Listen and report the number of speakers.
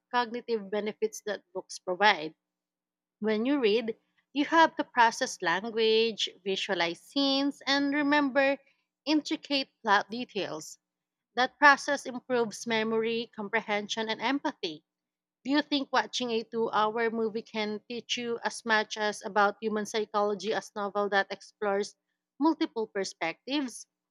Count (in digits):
1